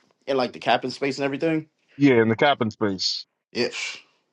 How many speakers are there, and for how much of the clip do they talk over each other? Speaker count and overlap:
two, no overlap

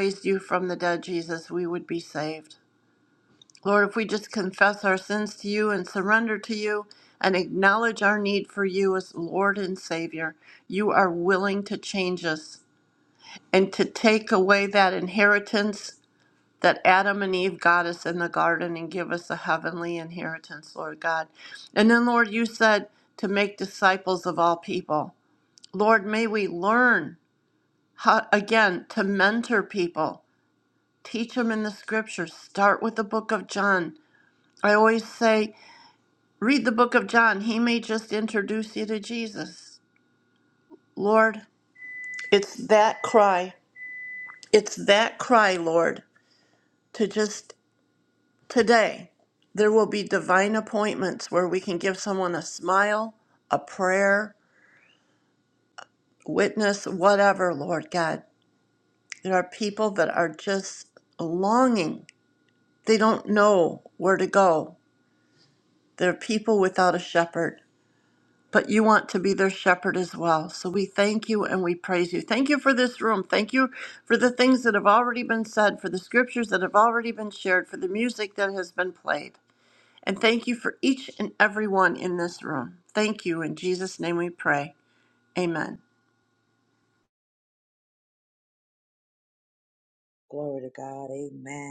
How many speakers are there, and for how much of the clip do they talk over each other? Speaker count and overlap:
two, no overlap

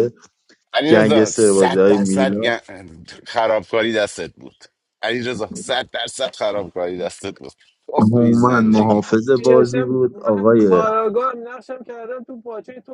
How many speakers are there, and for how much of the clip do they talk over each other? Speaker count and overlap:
three, about 31%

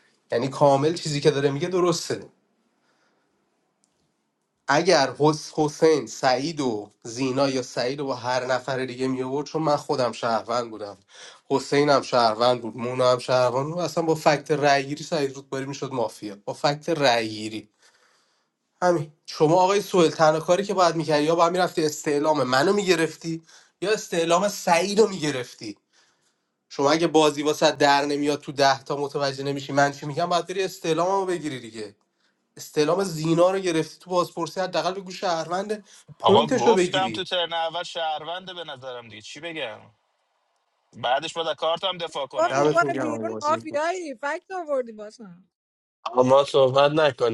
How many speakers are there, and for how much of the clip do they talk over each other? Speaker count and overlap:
four, about 5%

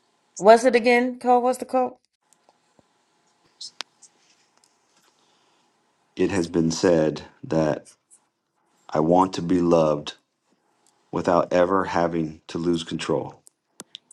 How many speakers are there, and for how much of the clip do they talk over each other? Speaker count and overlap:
two, no overlap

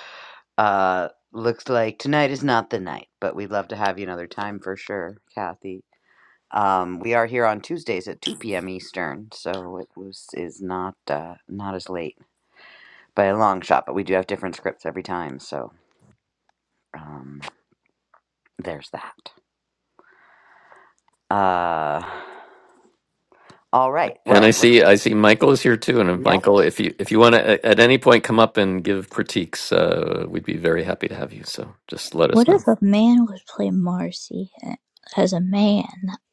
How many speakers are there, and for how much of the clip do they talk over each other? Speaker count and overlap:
three, about 3%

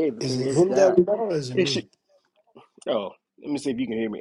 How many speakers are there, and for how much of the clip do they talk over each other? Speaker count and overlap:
two, about 25%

